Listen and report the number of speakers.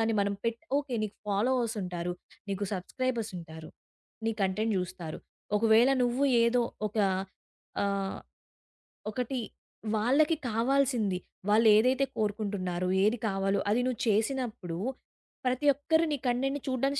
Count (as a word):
one